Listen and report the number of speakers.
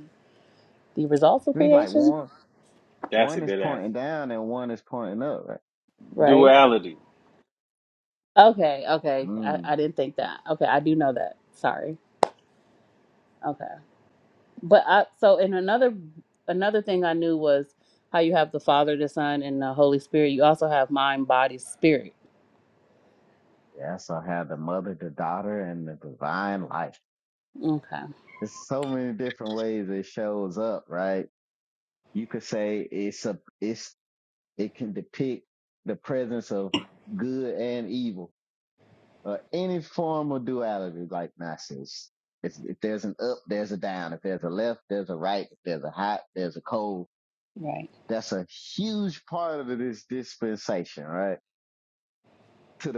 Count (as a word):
three